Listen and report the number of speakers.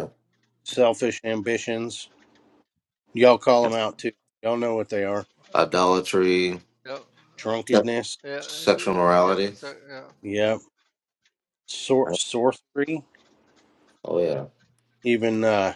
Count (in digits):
3